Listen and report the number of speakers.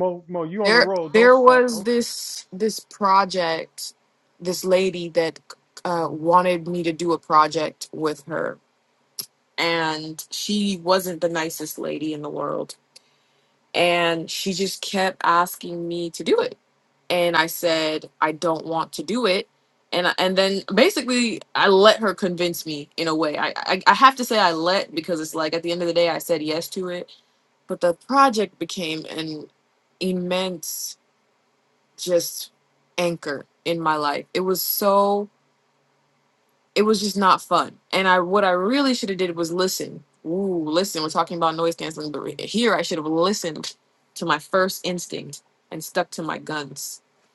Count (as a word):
two